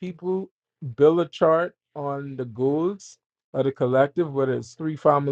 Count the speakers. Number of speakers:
1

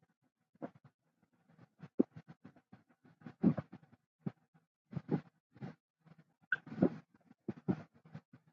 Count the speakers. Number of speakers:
0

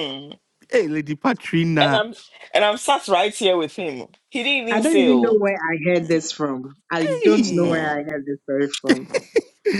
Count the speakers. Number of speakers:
3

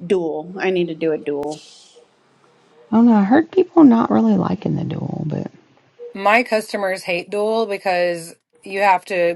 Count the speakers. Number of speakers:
3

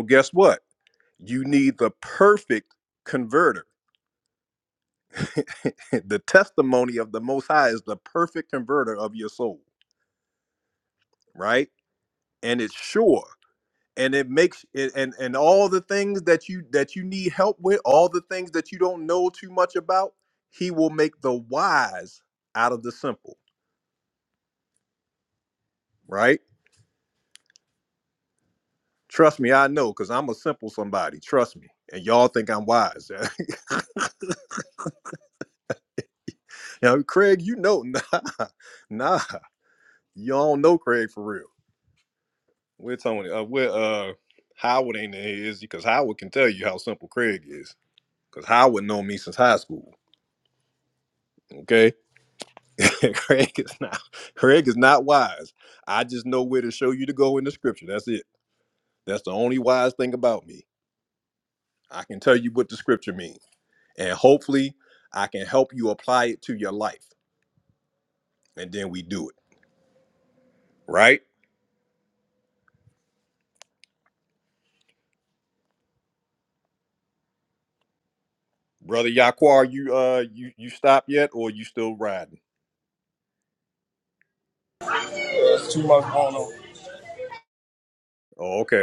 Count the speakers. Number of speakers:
2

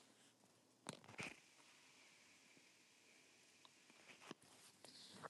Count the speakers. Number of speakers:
0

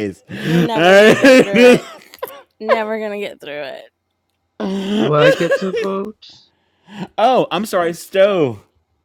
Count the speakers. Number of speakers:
3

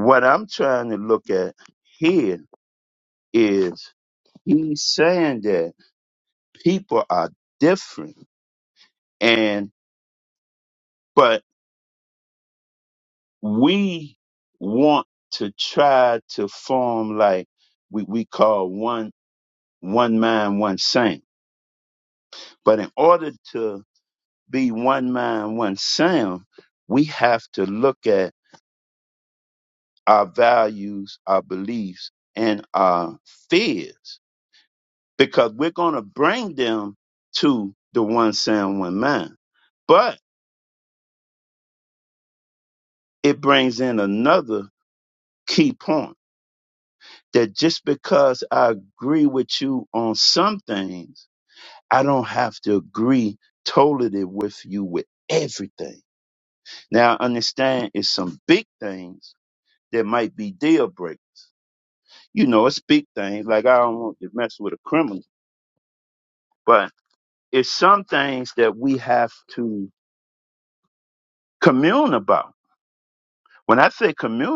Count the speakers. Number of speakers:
1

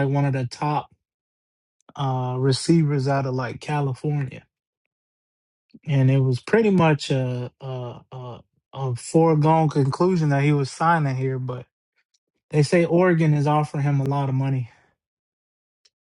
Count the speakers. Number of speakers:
1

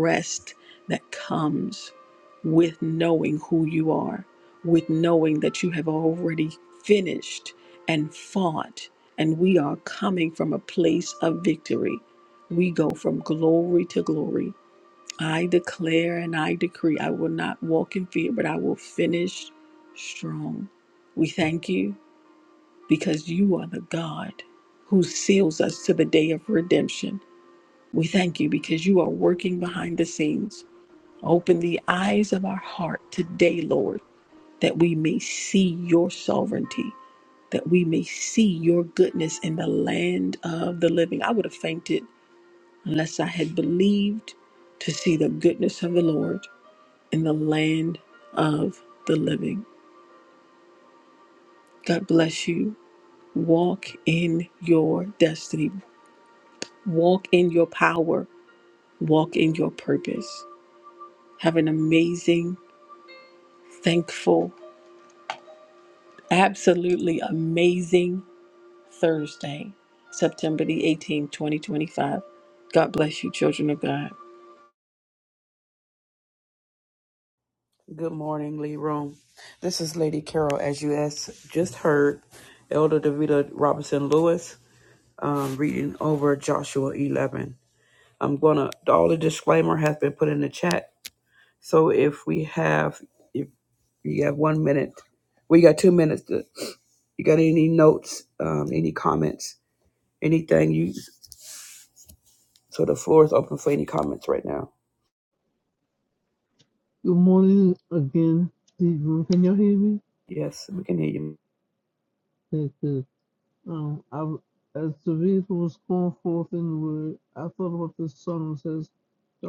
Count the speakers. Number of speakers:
3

